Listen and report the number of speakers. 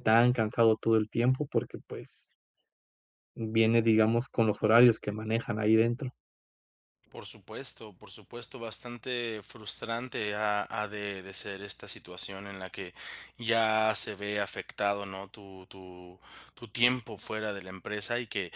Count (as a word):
two